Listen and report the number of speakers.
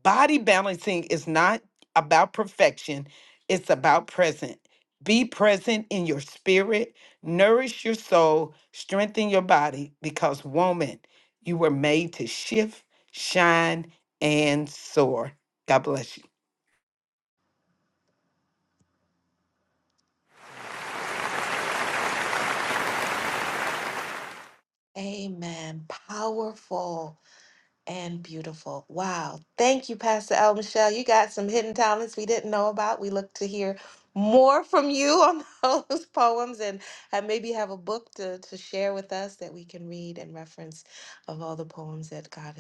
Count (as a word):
two